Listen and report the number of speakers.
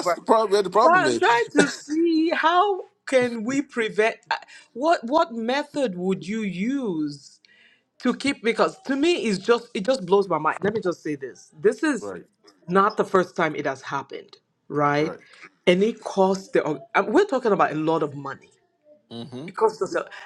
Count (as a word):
two